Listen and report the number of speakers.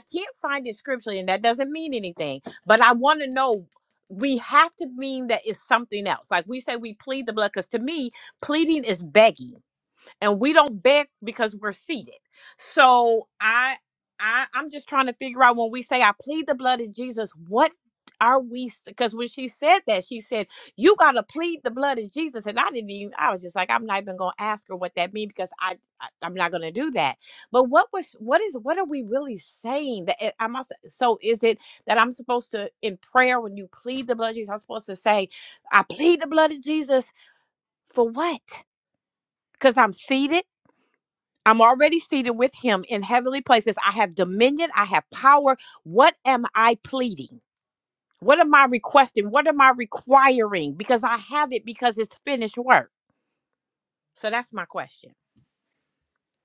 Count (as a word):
one